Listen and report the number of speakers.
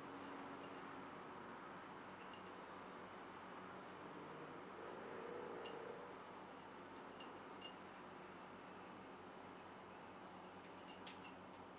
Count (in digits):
0